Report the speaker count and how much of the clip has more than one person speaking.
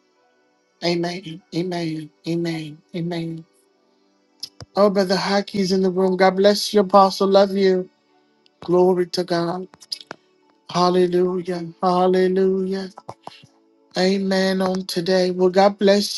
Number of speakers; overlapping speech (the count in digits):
1, no overlap